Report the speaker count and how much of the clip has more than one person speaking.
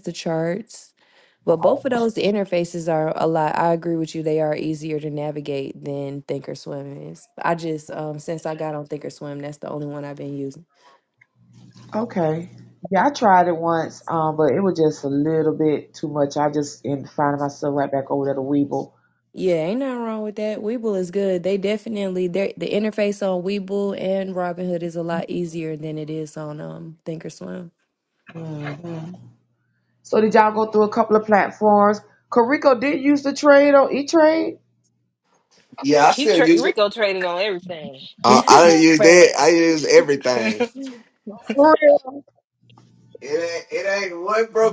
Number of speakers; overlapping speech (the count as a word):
four, about 2%